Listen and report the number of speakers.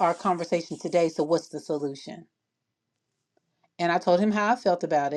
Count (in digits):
1